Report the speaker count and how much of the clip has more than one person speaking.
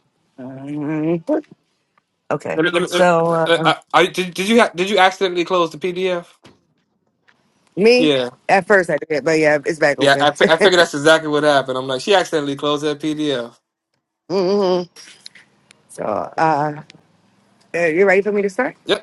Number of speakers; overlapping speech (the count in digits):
2, about 4%